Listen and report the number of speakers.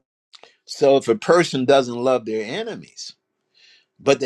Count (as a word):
one